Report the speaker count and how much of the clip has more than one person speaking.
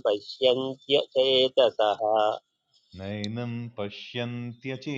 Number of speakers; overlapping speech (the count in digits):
2, no overlap